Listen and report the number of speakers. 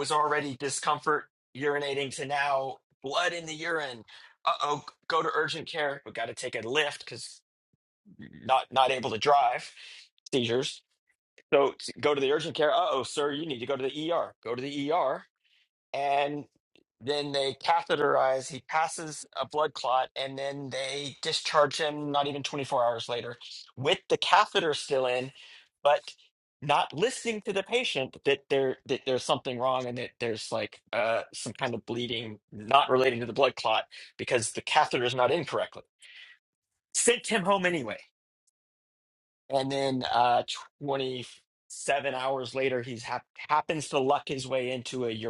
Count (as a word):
one